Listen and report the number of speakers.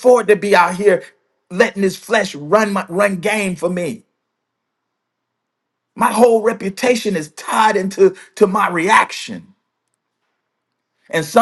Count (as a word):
one